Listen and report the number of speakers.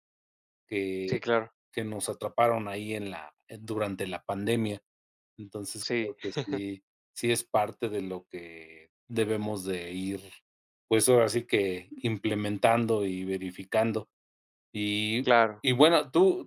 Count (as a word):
two